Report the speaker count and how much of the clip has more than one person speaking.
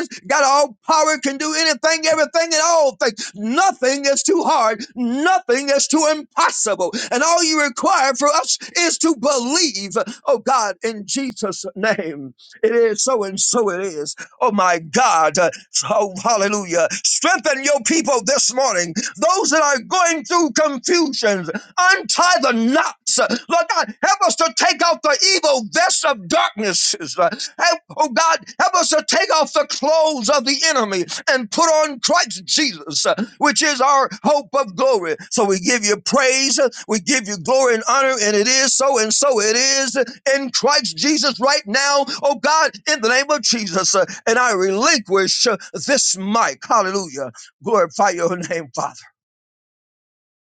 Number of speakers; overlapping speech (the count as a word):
one, no overlap